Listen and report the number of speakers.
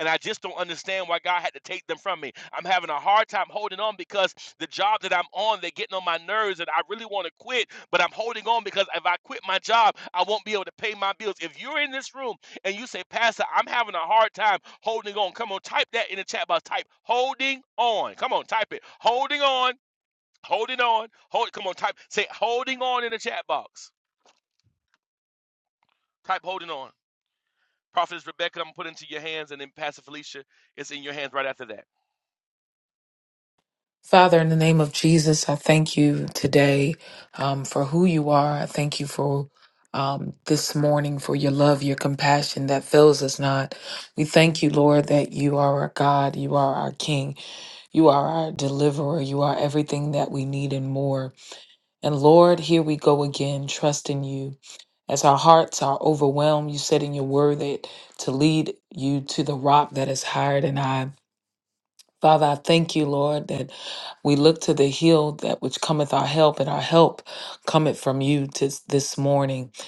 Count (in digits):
2